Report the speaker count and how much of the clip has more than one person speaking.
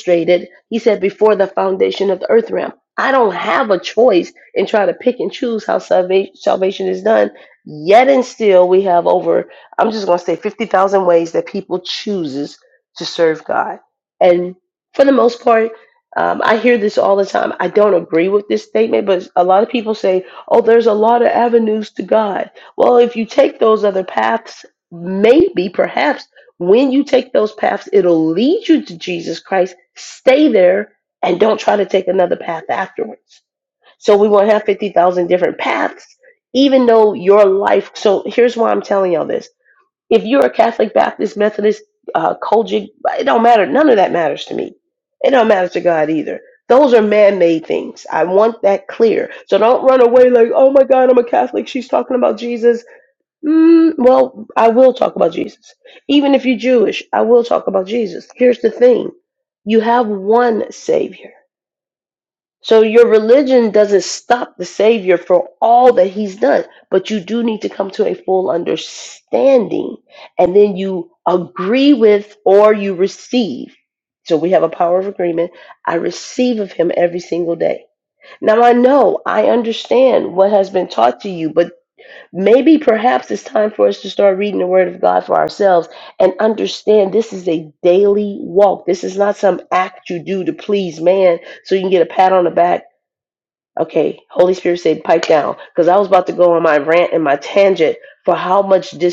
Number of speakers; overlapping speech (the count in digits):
1, no overlap